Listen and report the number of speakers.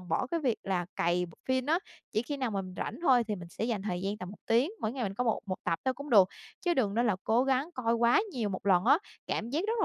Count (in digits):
1